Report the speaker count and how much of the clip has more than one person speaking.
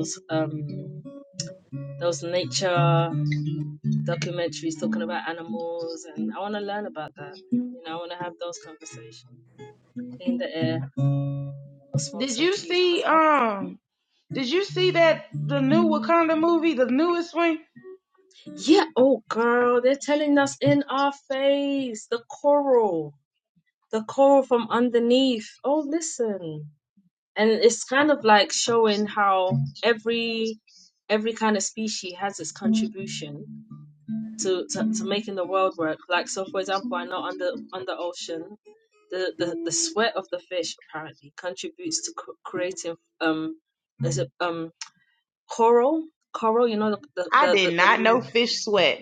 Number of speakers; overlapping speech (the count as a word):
two, about 4%